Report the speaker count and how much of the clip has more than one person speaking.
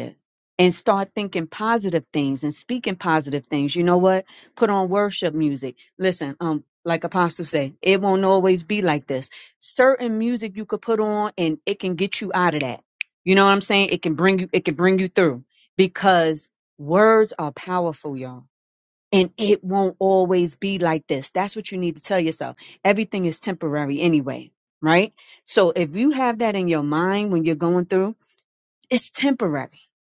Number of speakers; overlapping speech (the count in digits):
1, no overlap